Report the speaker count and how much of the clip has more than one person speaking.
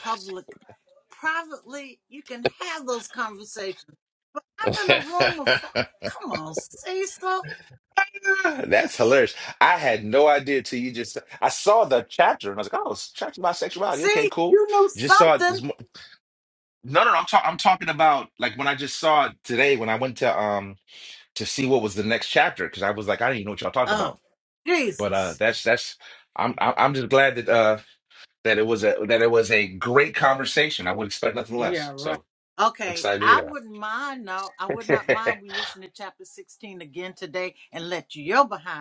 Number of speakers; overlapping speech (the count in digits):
2, about 9%